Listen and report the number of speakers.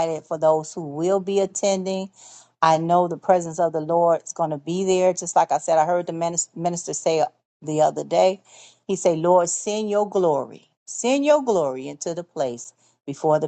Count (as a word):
one